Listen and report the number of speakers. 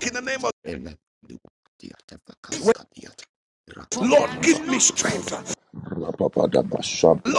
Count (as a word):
three